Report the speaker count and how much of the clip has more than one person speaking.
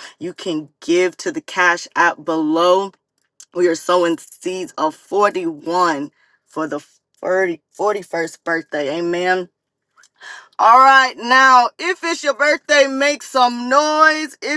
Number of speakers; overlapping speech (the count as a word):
one, no overlap